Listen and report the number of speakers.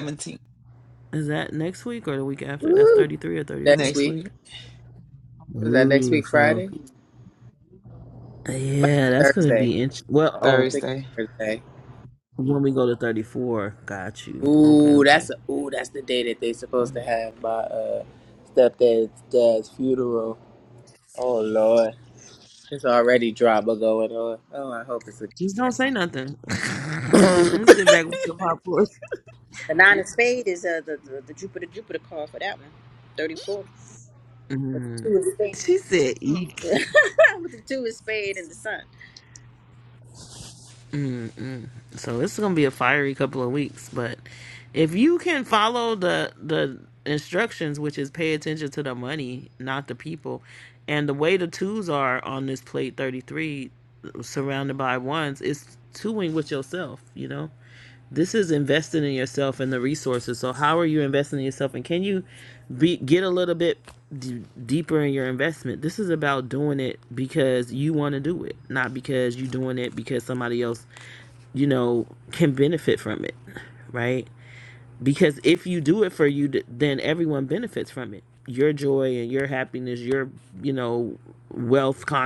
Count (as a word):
four